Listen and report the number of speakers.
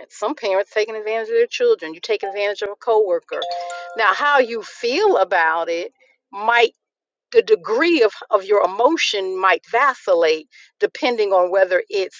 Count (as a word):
one